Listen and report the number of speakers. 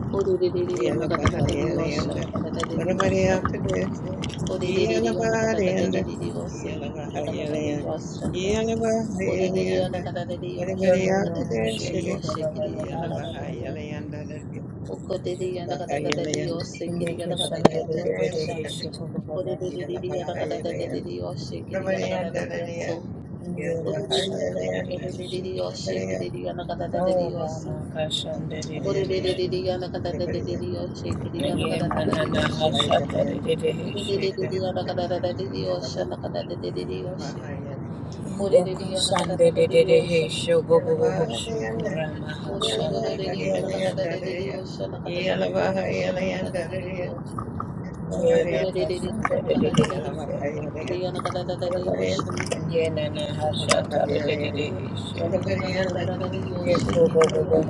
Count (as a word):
three